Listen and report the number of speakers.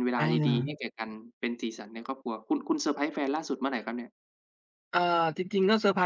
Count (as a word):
two